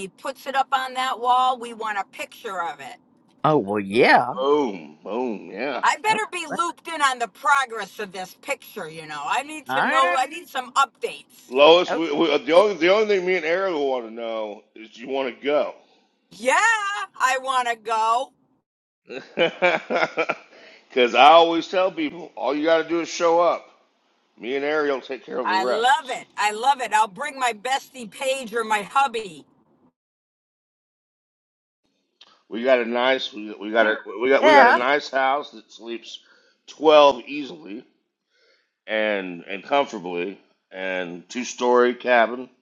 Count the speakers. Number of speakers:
3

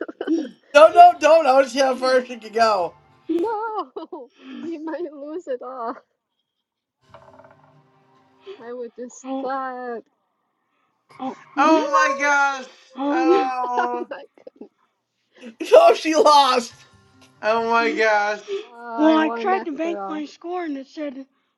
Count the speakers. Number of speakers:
4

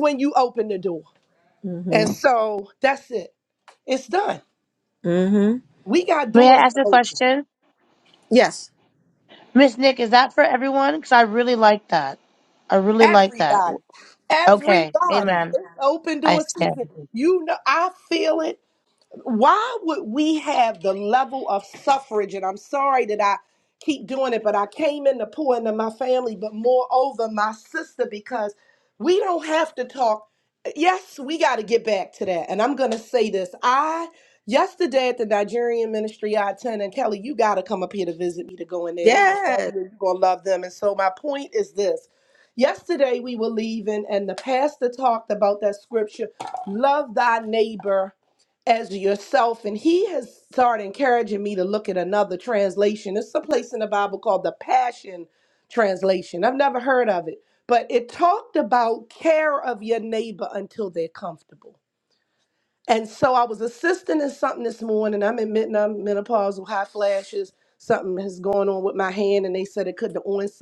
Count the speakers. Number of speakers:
3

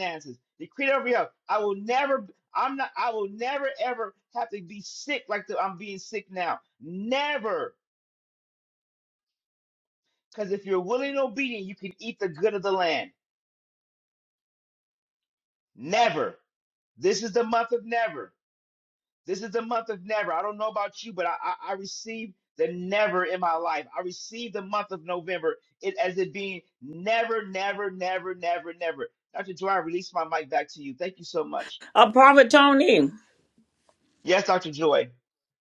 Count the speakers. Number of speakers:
2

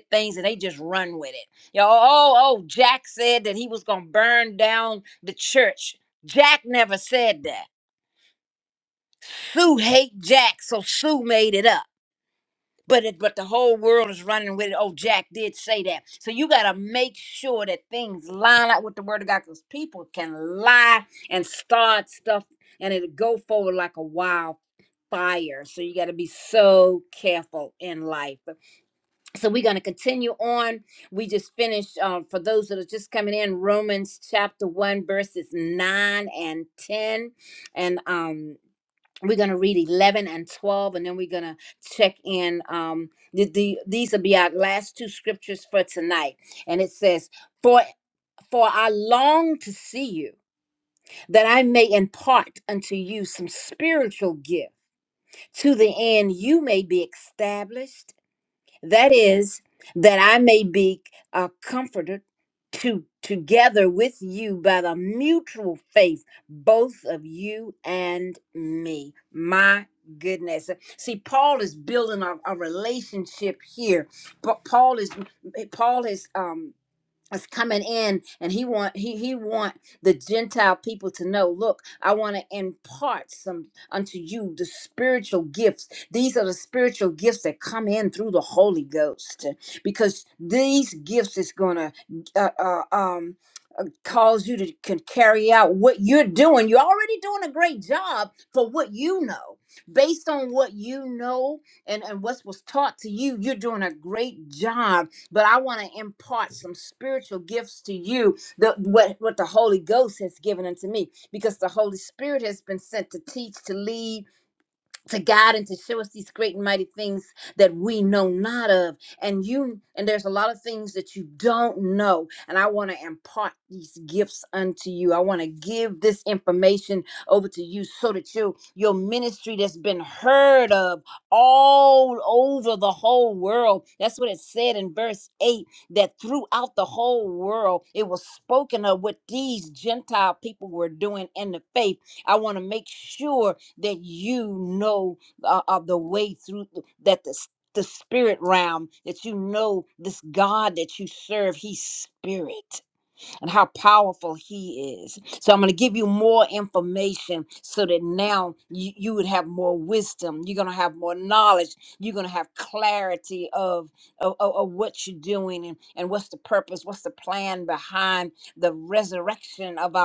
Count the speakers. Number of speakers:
1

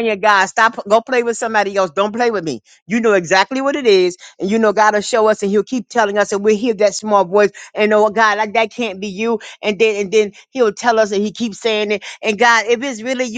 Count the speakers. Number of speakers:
1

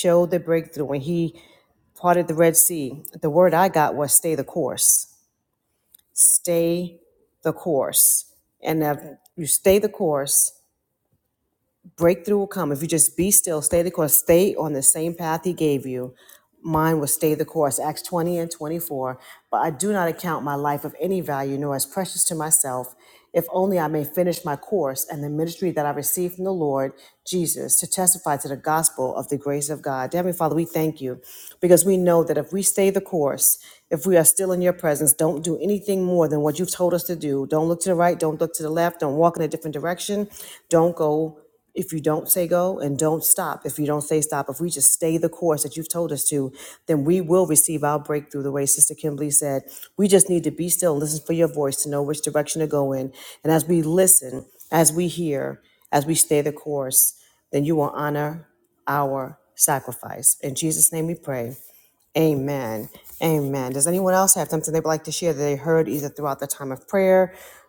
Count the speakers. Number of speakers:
1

